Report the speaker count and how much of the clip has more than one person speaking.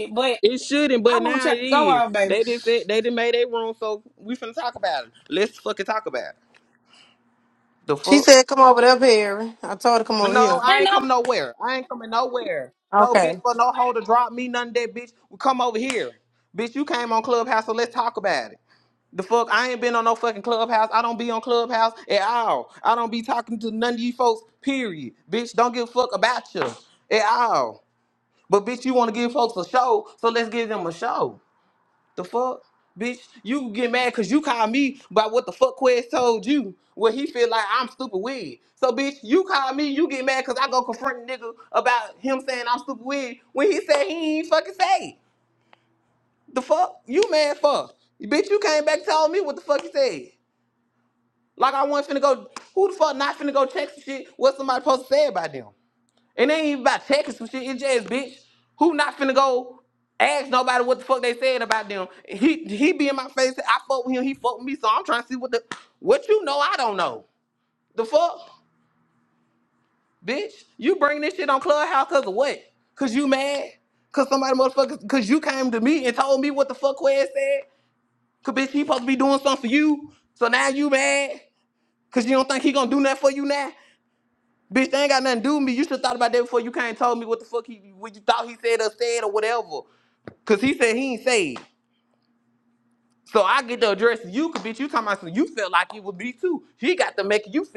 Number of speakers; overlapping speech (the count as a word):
three, about 3%